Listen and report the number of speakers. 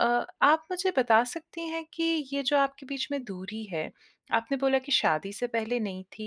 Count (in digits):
1